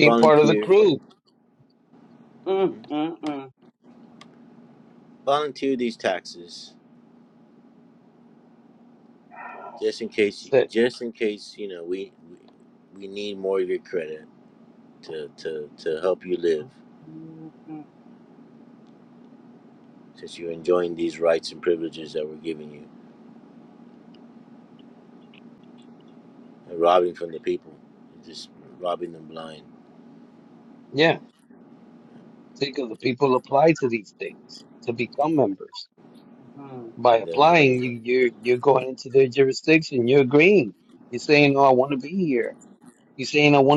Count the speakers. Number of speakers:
3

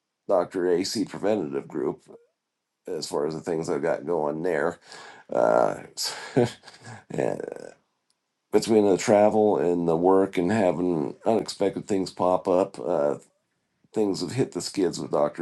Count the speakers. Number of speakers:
1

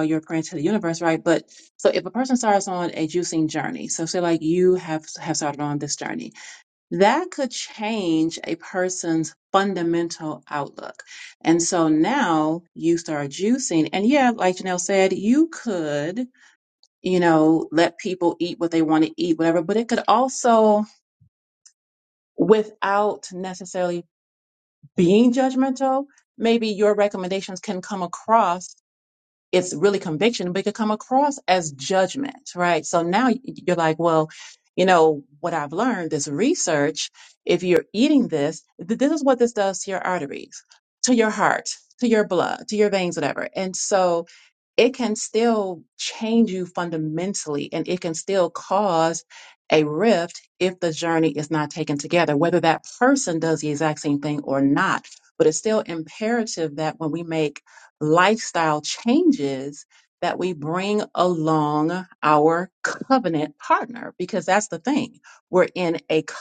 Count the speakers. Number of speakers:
1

